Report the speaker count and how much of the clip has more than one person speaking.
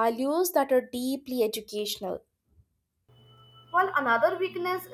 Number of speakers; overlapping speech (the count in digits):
2, no overlap